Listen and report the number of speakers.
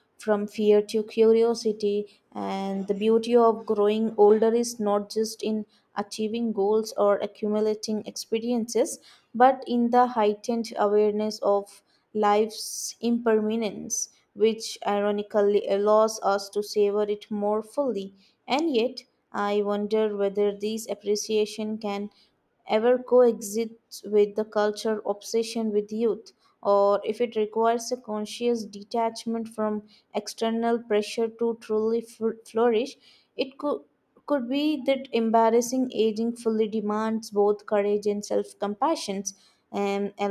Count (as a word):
one